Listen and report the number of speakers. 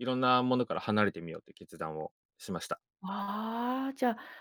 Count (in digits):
2